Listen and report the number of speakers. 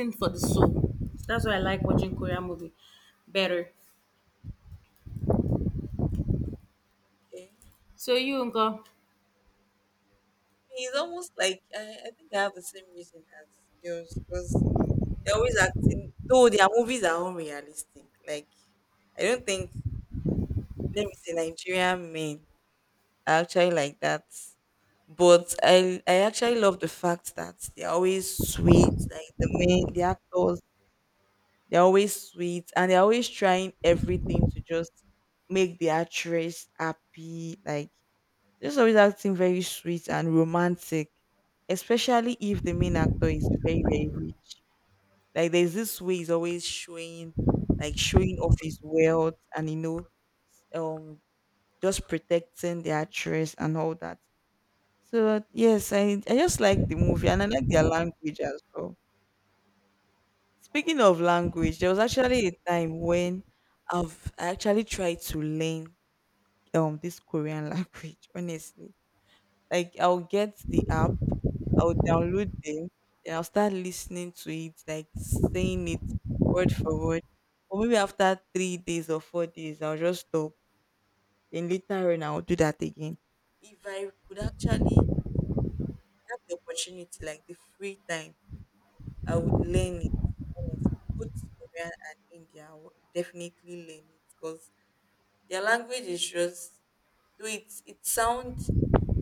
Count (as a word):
two